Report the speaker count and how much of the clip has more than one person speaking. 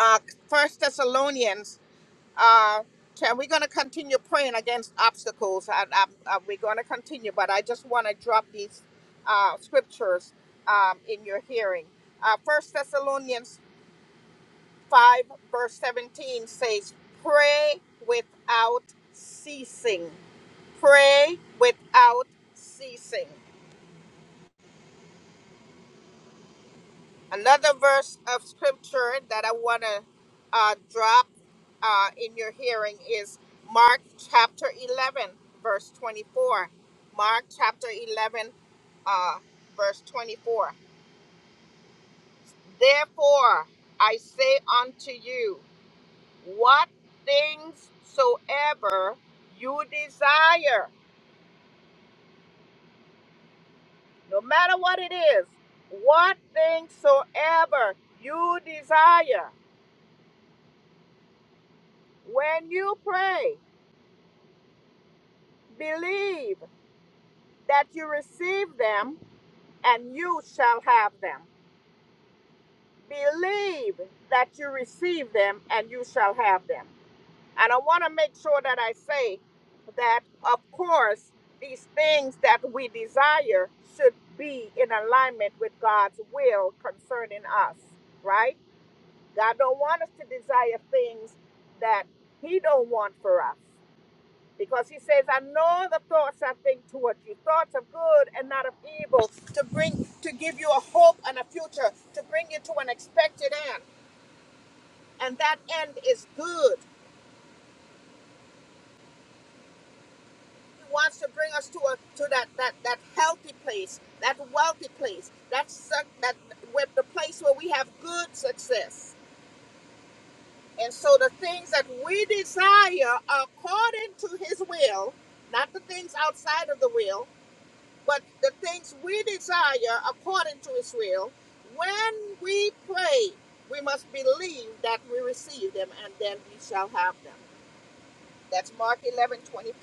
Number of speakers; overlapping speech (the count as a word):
one, no overlap